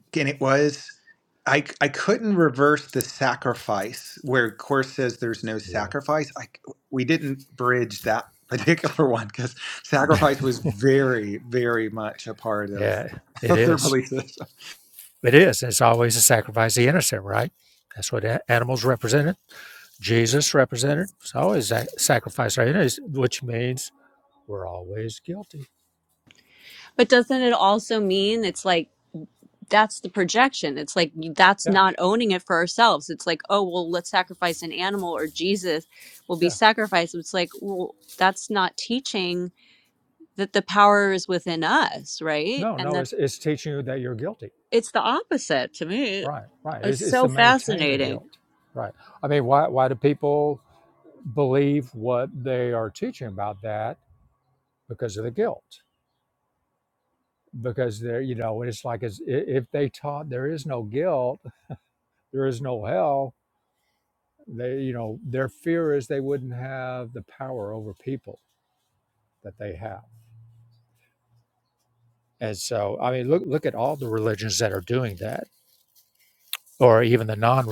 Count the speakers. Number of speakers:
three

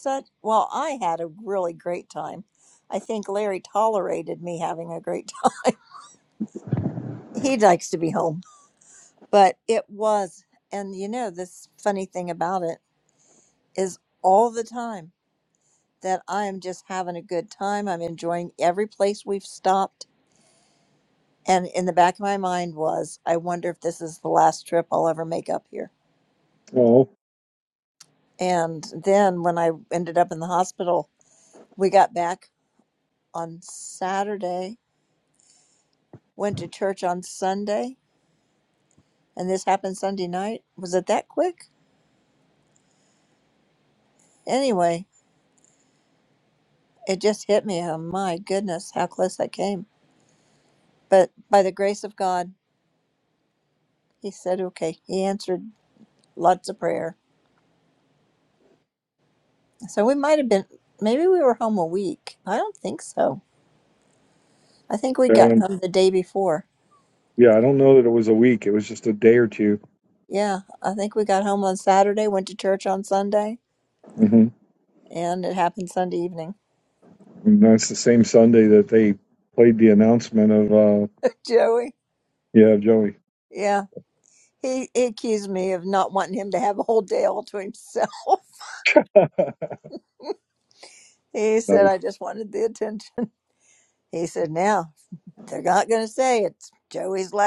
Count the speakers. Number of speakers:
two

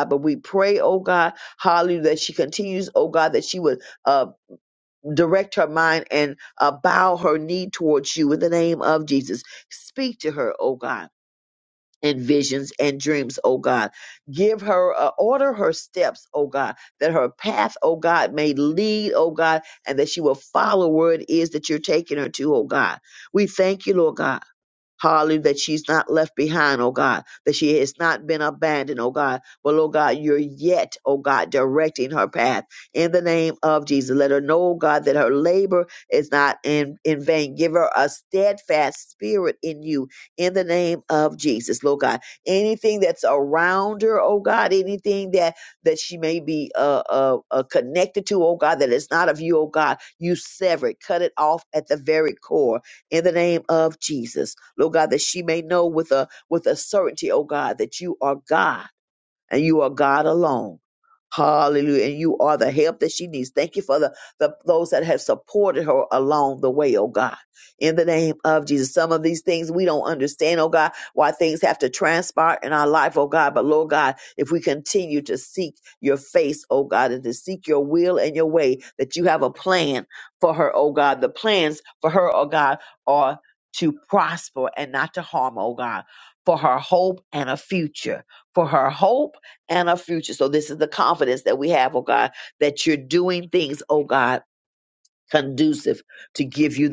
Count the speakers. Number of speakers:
one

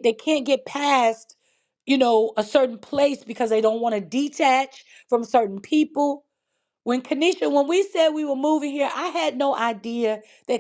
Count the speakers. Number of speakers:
one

